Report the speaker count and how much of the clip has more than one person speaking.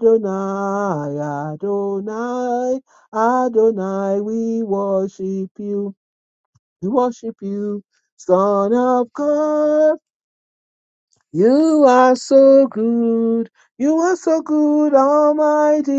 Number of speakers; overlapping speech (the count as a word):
one, no overlap